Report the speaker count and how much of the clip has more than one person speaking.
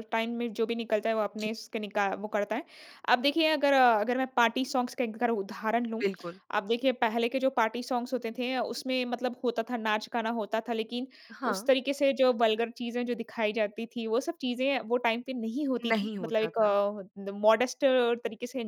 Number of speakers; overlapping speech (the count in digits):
2, about 6%